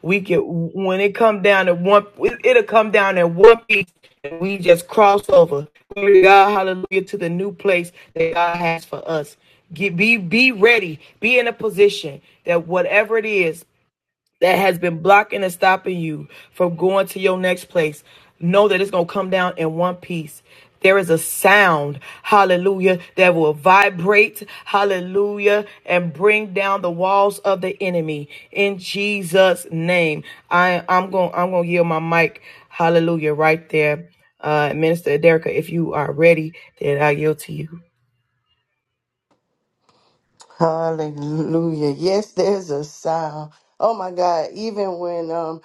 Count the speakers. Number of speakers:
2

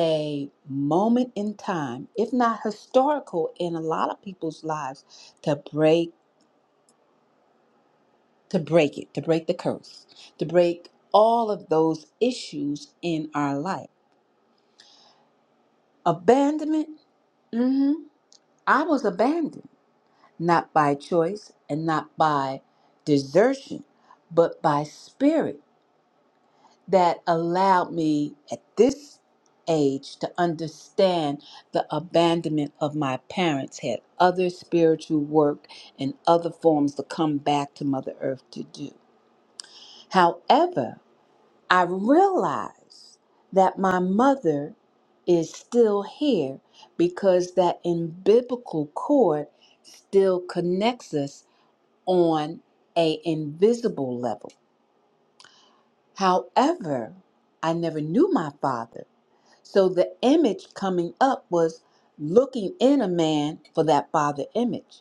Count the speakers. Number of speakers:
1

